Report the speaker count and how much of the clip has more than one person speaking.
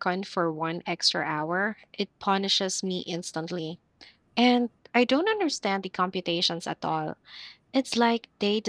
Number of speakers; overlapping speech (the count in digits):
1, no overlap